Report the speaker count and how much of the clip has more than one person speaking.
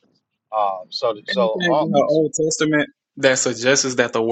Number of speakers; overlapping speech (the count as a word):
two, about 14%